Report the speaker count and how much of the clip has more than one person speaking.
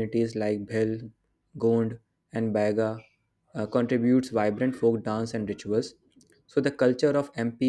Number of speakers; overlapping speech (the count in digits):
1, no overlap